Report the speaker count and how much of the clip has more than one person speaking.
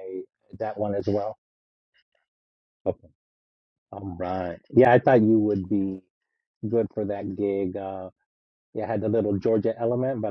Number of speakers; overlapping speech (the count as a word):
one, no overlap